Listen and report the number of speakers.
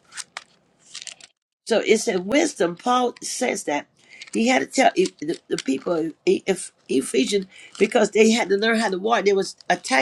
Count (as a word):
one